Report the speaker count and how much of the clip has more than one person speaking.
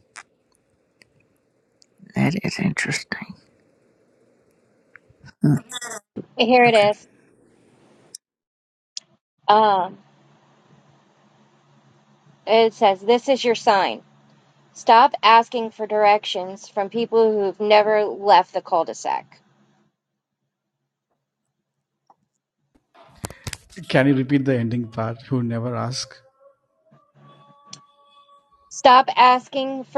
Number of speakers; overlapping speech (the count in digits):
3, about 1%